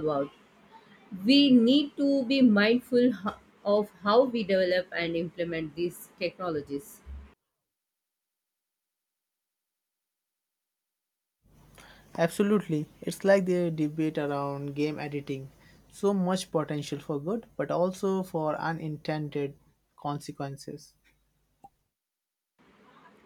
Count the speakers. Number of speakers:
2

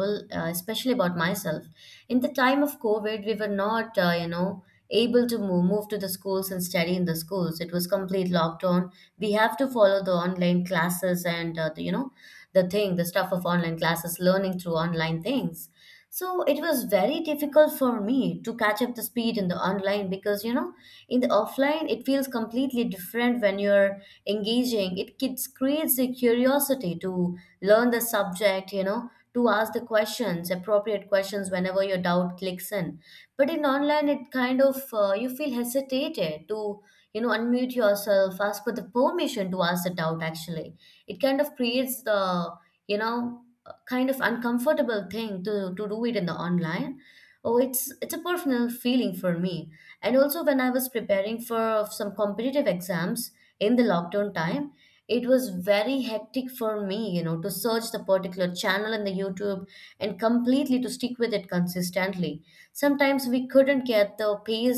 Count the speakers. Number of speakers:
1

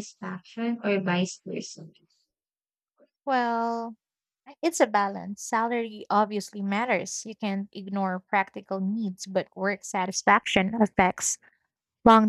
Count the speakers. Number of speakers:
2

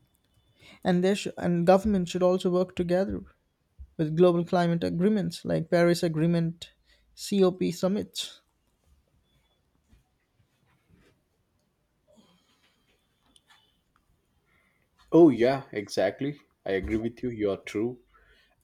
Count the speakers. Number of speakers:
2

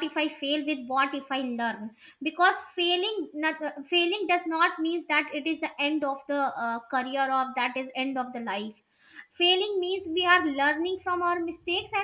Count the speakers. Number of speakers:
1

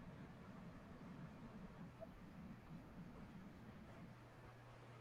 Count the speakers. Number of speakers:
0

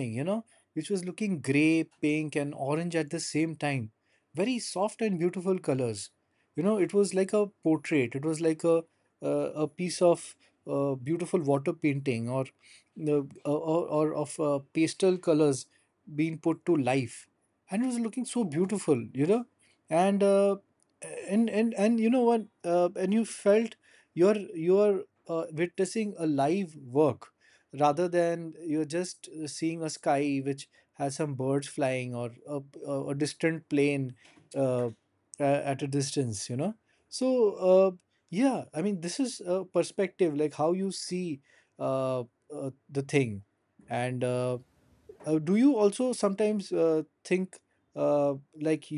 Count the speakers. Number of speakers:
1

